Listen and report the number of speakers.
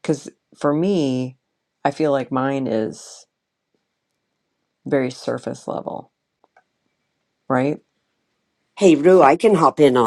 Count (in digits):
2